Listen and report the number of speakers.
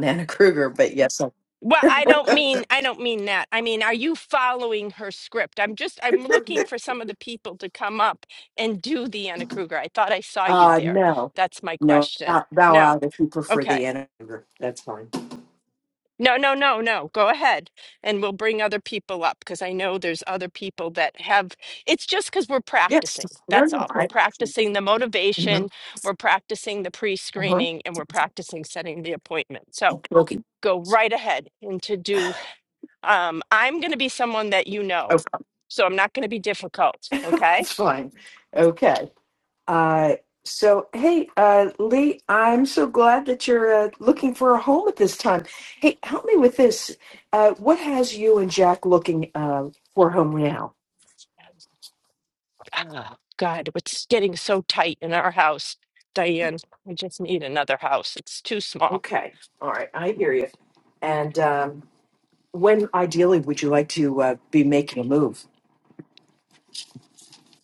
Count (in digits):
2